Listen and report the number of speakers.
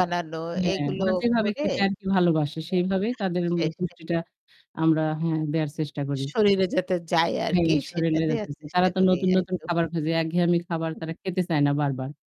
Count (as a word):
two